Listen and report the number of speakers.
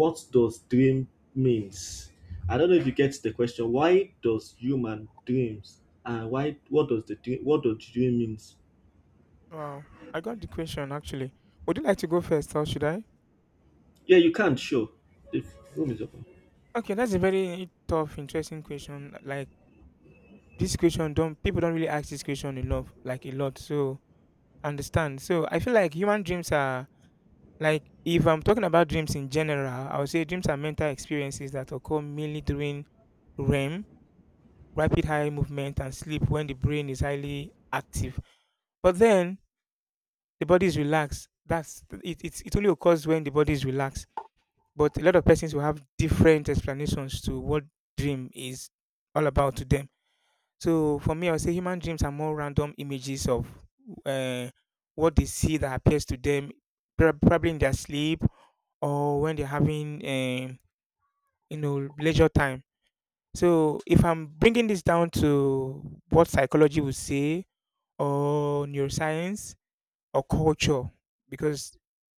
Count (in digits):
2